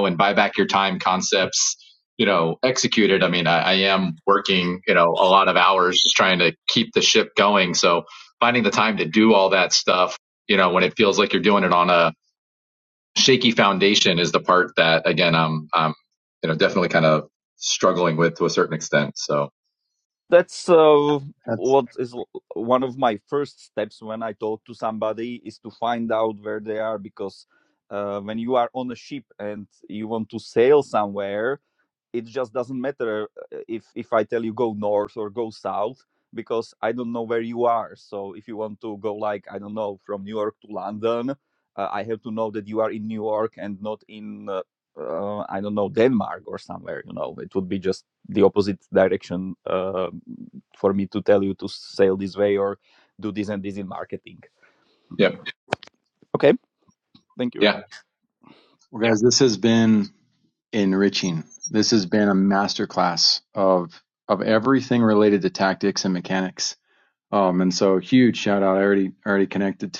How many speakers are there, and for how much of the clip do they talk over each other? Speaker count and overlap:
three, under 1%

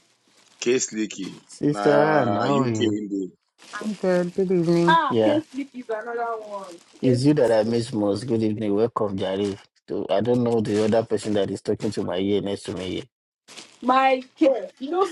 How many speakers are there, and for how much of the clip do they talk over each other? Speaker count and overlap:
four, about 9%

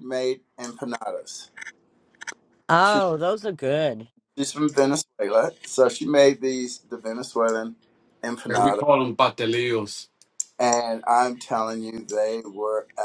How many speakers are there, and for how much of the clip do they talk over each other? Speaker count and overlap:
three, about 3%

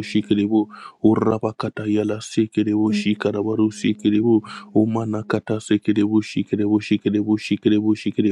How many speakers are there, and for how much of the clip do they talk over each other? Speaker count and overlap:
one, no overlap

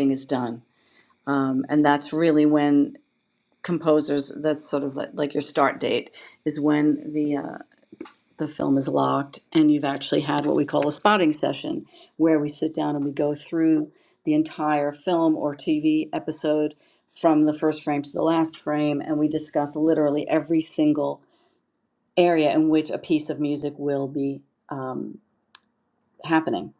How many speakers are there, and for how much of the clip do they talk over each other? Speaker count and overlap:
one, no overlap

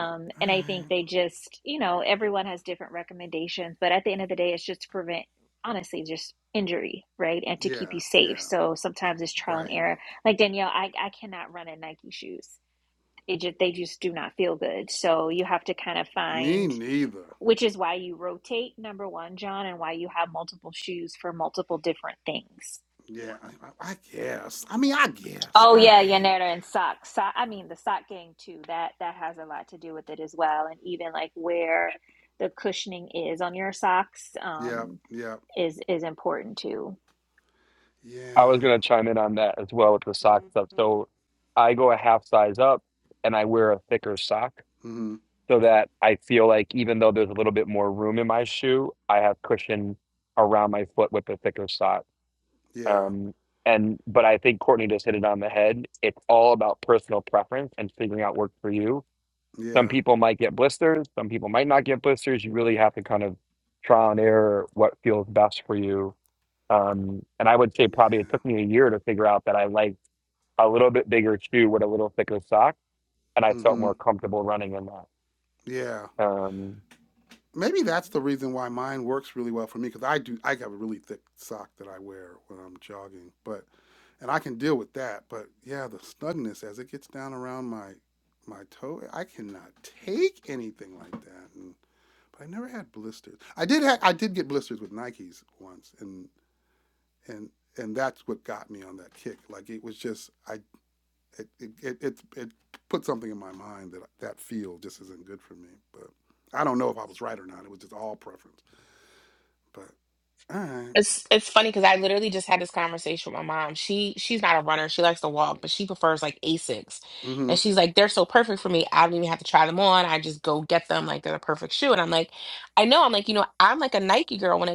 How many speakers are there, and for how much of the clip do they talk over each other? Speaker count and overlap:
four, about 4%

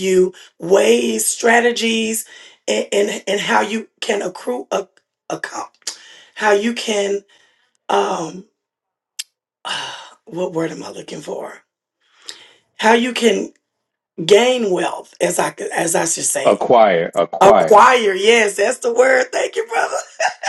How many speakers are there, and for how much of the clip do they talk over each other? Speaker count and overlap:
two, about 3%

